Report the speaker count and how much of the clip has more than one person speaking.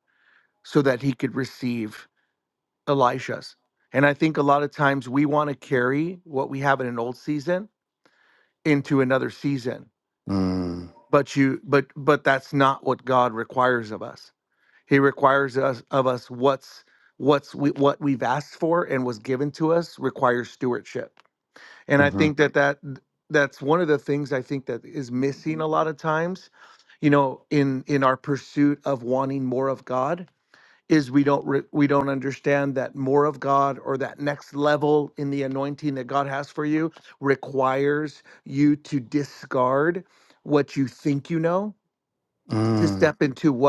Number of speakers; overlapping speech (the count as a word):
two, about 1%